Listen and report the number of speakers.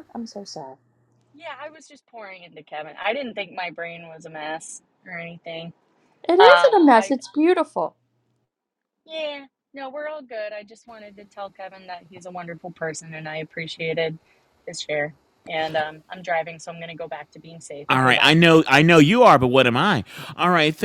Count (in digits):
3